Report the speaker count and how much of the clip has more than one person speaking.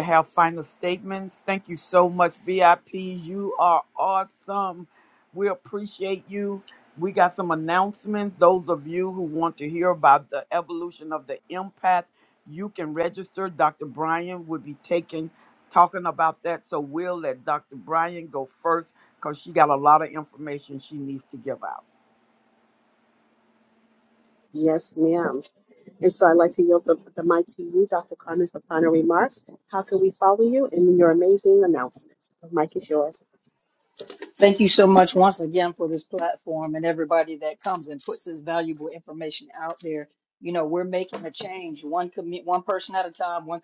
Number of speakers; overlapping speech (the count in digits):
3, no overlap